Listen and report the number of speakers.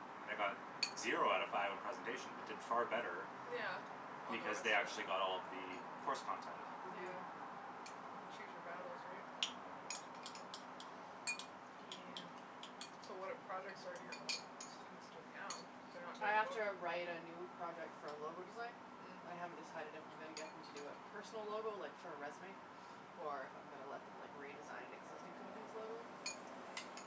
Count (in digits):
3